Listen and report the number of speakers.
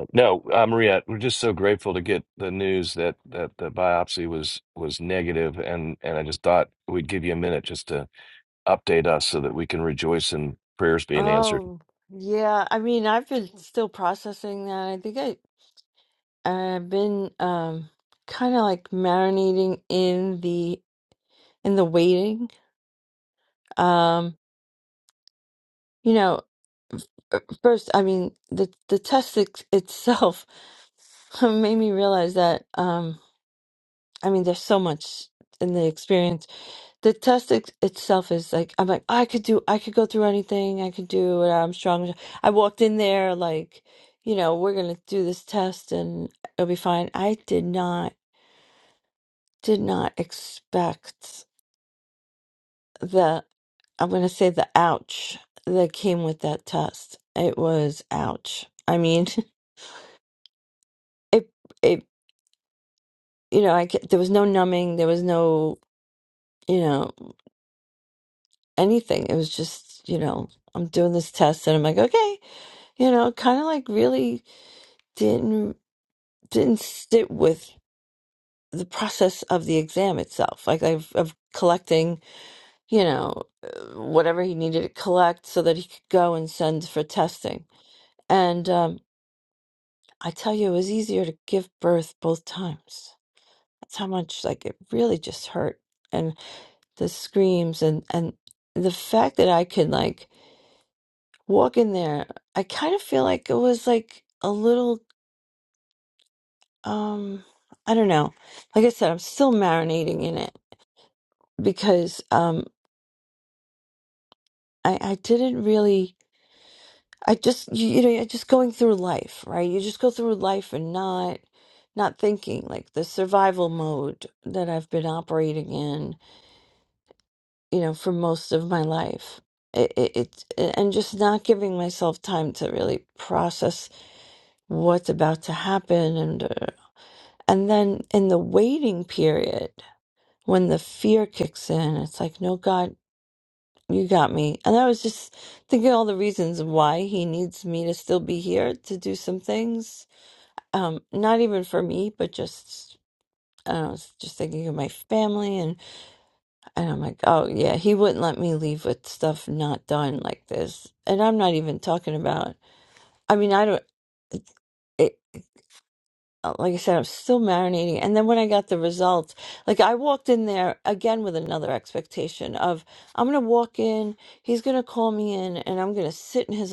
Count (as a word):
two